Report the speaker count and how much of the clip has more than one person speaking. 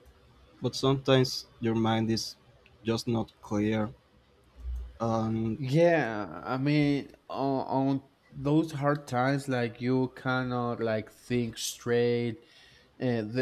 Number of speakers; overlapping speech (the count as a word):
two, no overlap